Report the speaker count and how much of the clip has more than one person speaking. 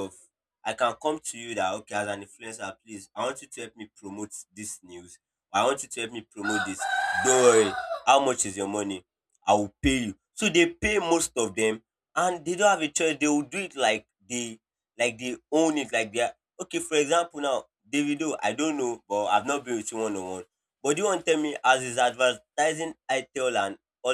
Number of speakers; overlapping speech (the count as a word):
one, no overlap